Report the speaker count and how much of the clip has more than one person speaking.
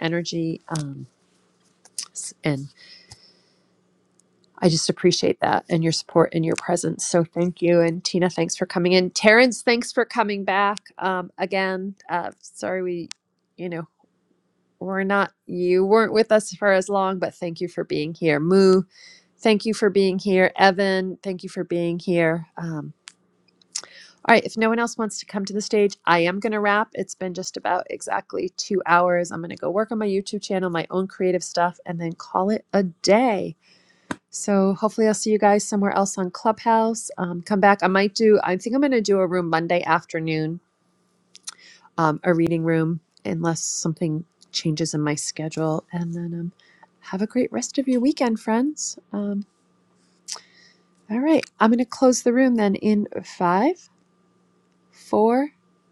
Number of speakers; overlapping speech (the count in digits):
1, no overlap